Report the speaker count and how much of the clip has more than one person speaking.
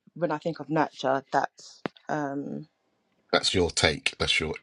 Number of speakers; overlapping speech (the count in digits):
2, no overlap